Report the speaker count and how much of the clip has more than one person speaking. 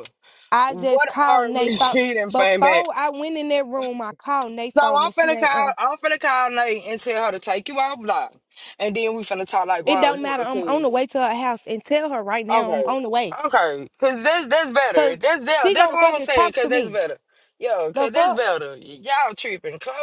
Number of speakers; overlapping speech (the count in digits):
2, about 30%